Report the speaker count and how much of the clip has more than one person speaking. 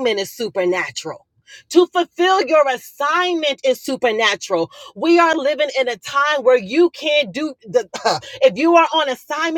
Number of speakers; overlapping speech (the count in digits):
1, no overlap